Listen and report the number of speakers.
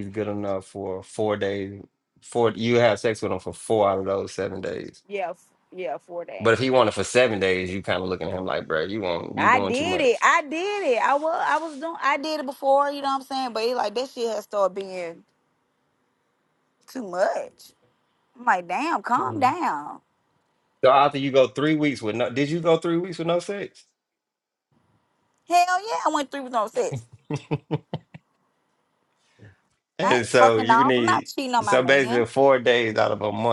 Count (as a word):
two